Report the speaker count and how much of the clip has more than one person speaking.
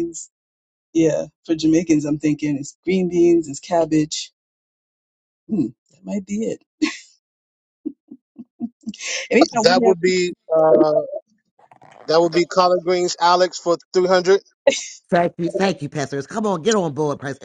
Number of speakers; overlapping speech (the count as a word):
three, about 2%